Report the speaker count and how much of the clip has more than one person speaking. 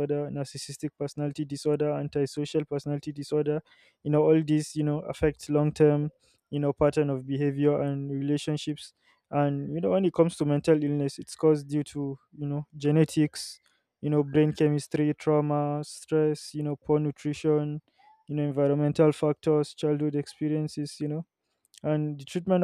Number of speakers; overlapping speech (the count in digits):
1, no overlap